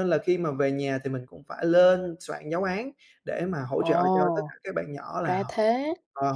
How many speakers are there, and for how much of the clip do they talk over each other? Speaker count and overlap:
2, about 16%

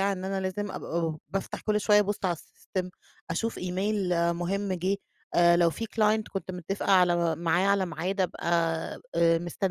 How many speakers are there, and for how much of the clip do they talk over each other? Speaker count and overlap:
1, no overlap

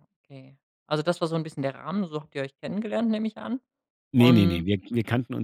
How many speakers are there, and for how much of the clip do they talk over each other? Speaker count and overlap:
2, about 8%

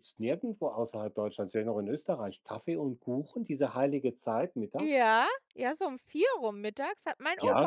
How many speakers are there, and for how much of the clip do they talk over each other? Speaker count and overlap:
2, about 4%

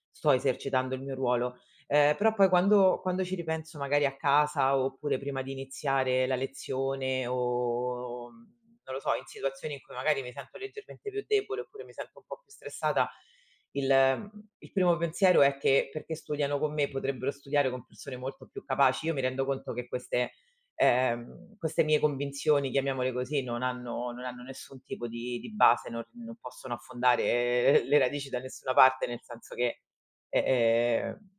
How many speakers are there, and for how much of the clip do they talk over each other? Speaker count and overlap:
1, no overlap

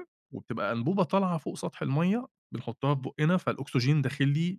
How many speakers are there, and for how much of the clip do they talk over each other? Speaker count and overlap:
1, no overlap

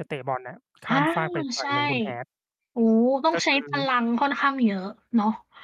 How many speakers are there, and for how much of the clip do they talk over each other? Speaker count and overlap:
2, about 14%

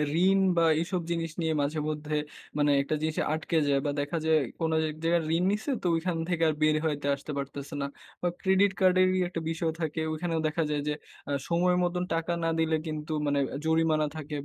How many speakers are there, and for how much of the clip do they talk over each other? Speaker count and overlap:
1, no overlap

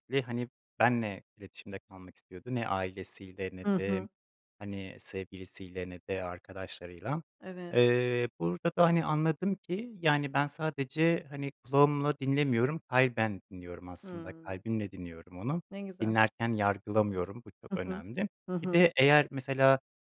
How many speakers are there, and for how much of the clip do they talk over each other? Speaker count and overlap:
2, about 7%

